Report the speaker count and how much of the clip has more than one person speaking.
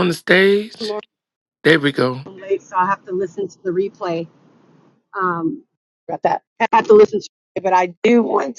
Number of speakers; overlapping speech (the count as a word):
two, about 1%